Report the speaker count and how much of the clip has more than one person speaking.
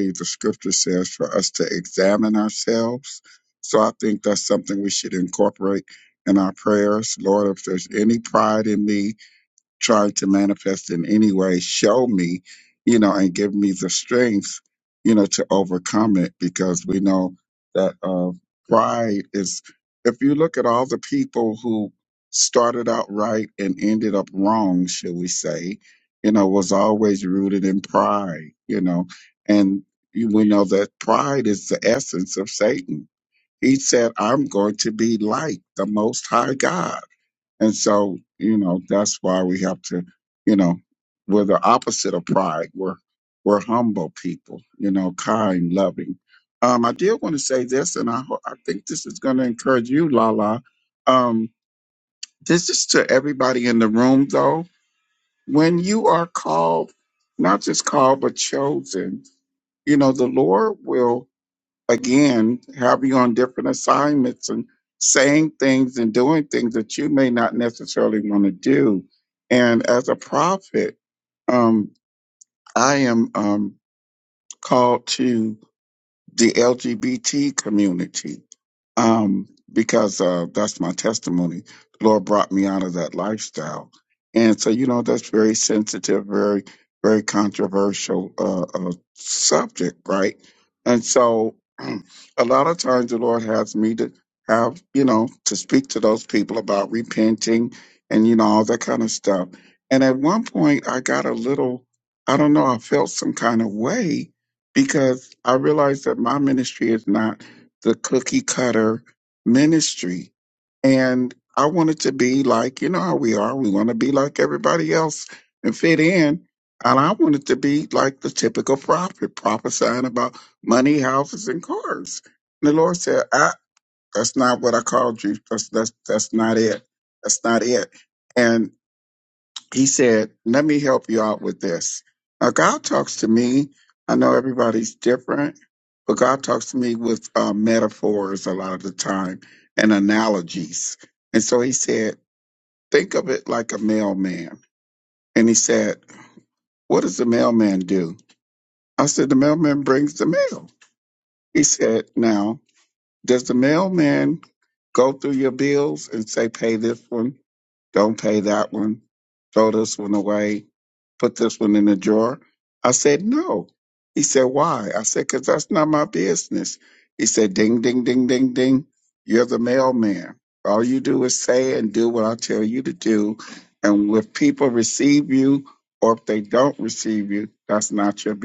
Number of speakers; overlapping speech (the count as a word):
one, no overlap